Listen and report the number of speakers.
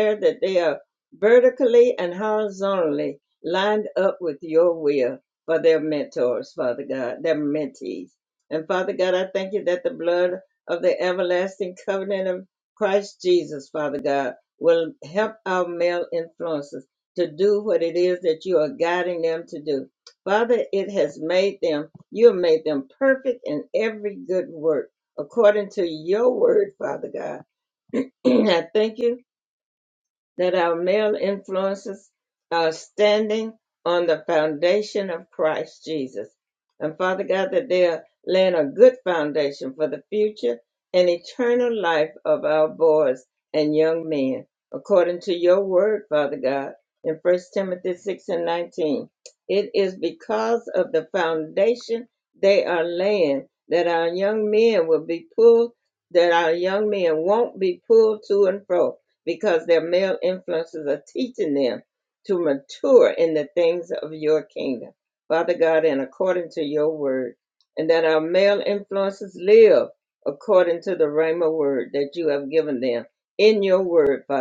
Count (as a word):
one